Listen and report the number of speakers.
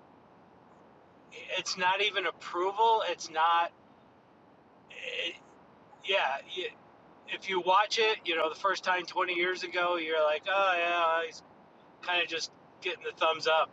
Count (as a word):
one